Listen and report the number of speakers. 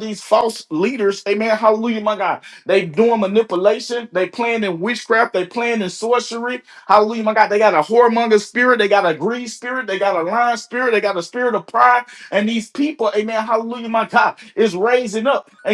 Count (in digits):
1